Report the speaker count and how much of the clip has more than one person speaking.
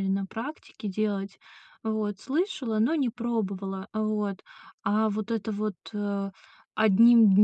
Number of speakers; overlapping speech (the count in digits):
1, no overlap